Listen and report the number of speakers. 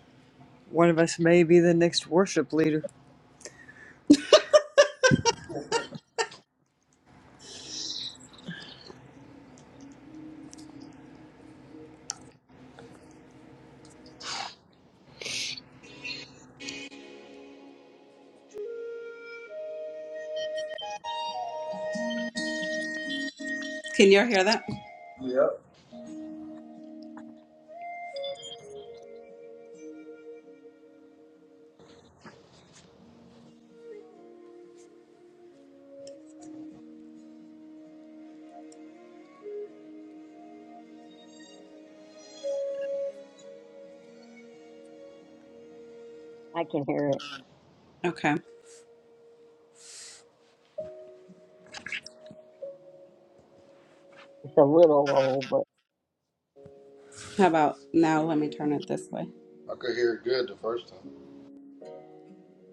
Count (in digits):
4